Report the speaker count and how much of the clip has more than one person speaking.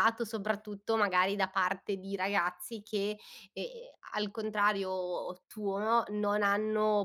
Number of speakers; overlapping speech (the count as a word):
one, no overlap